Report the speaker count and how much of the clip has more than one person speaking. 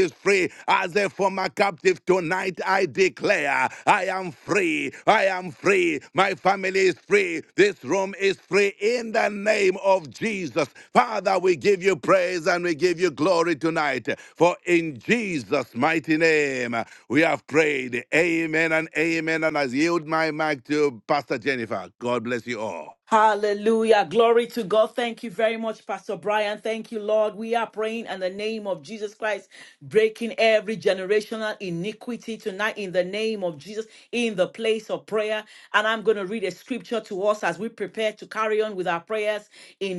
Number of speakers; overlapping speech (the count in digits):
2, no overlap